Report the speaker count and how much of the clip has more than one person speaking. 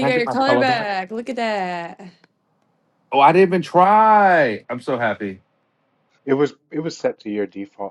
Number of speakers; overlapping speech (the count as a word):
three, about 11%